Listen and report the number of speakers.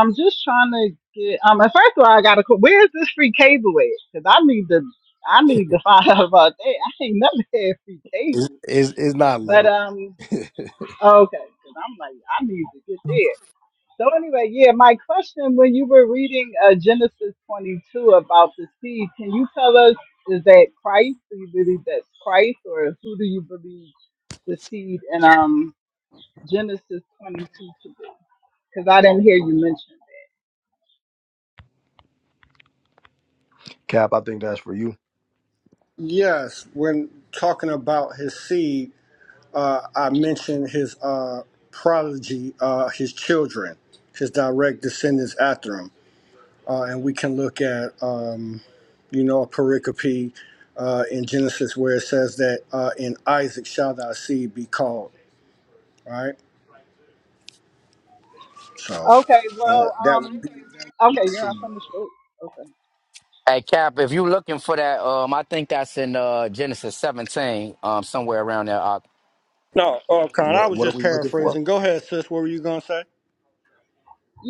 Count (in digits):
4